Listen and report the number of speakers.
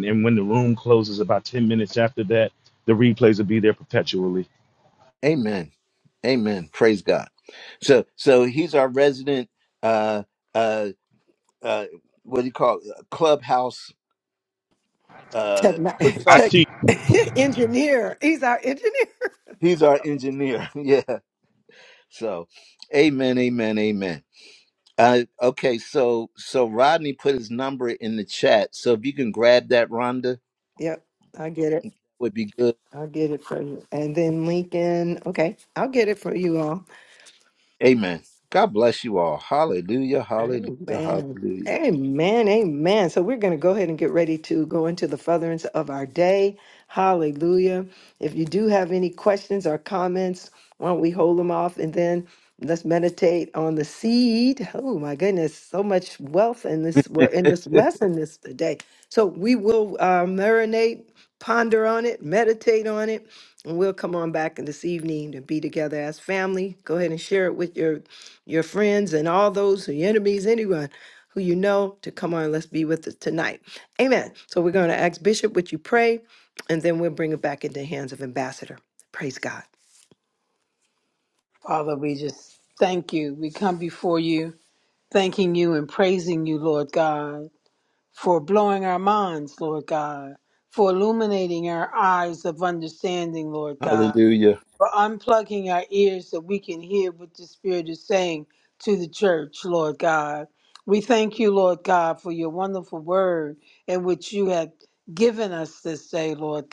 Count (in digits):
4